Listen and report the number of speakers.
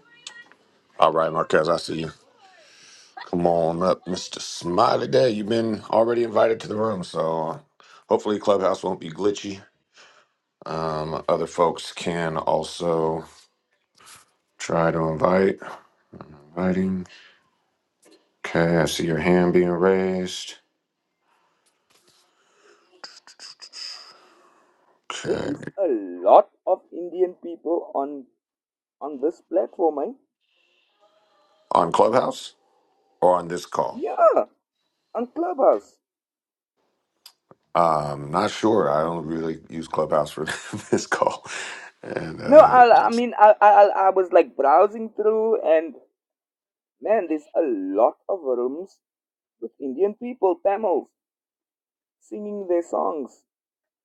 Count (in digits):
2